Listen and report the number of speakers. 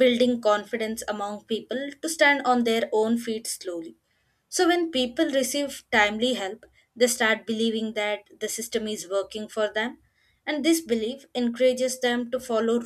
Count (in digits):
1